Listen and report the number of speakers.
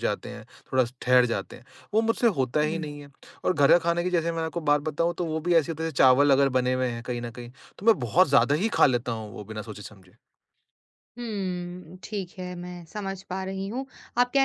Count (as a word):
two